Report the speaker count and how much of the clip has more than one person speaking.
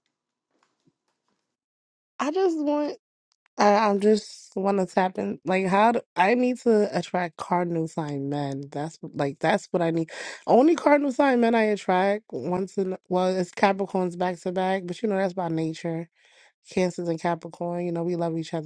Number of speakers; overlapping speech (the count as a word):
one, no overlap